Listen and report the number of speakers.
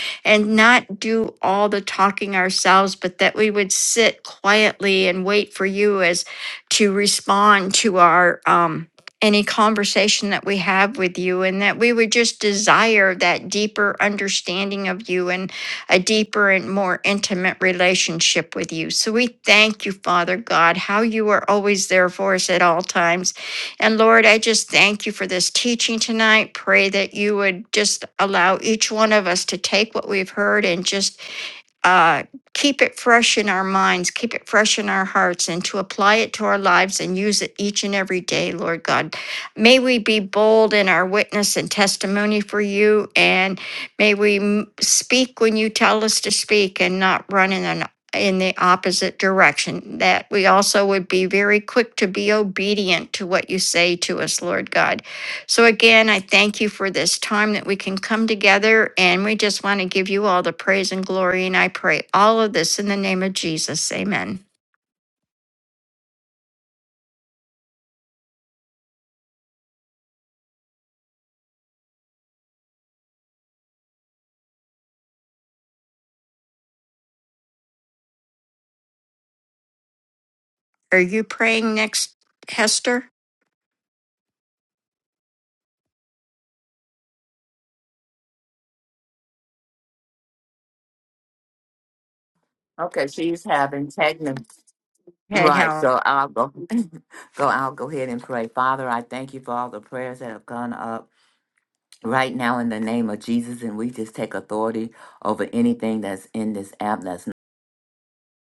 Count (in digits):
2